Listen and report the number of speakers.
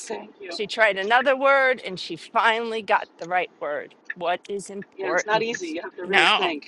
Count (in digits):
2